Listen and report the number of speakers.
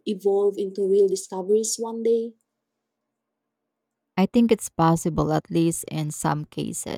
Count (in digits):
2